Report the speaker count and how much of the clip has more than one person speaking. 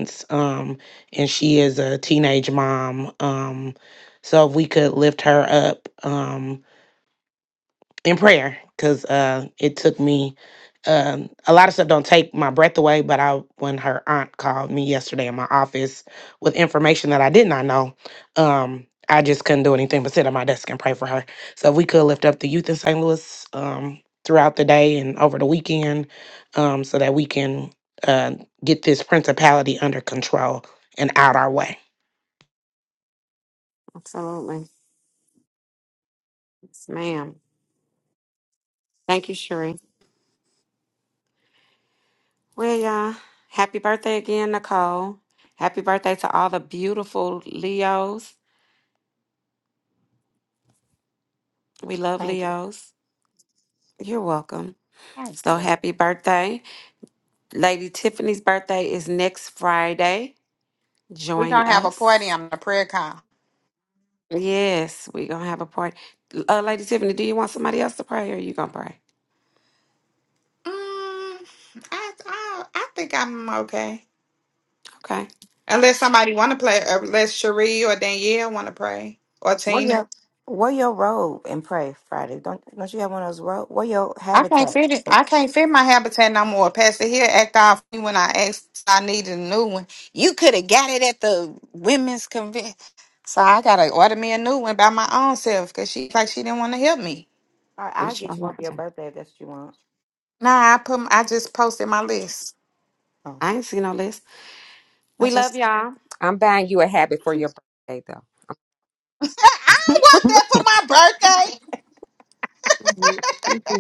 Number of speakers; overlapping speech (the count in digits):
5, about 3%